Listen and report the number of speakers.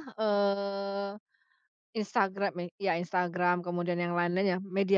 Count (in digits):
1